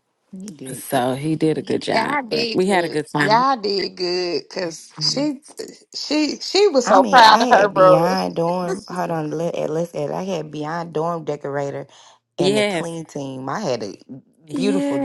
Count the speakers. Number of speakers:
3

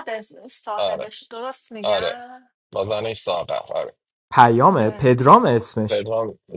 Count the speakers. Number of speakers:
3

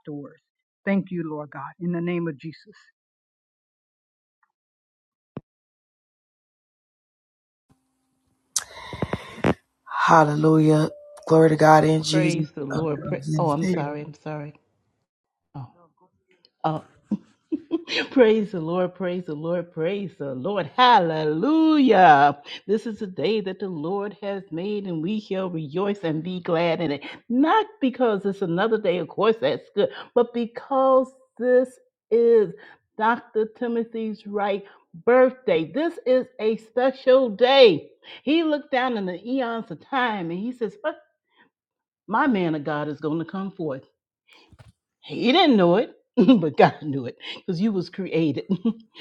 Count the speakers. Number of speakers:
3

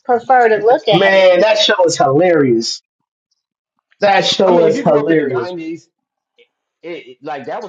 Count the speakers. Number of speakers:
3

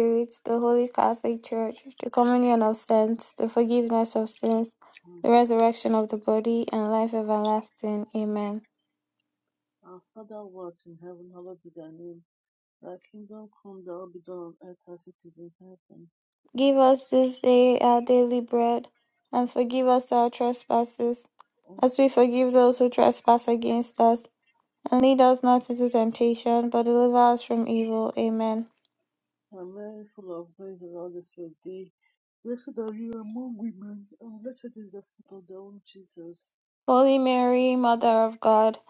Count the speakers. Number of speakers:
2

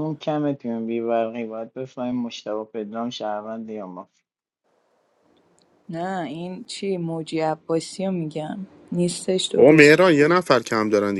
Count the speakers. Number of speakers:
3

